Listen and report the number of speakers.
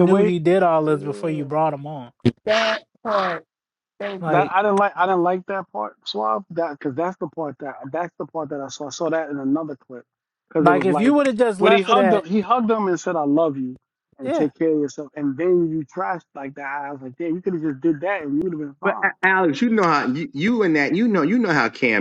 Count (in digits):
4